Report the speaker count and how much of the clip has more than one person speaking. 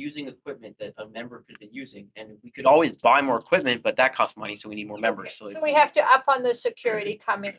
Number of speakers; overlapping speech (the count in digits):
2, about 13%